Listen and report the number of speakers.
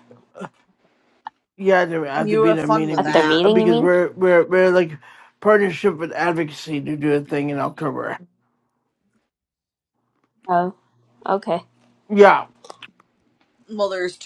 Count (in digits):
3